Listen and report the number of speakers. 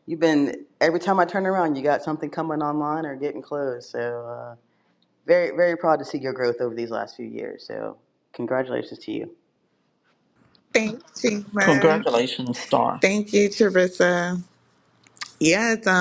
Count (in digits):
3